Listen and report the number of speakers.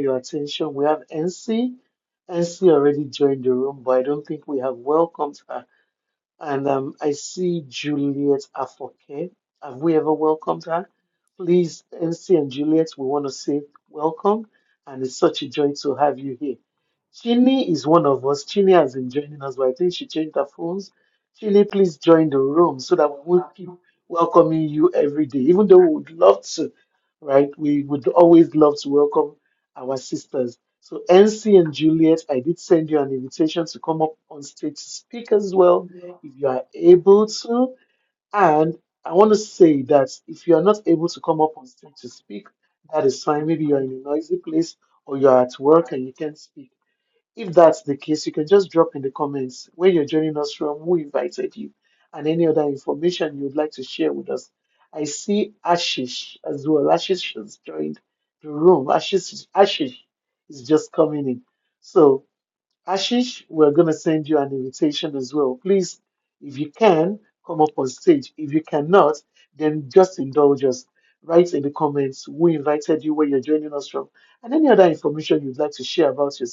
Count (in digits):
1